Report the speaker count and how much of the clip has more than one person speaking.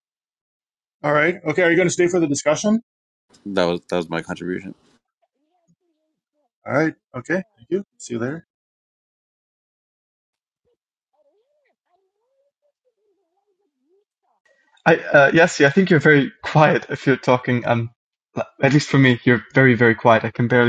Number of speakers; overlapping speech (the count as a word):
three, no overlap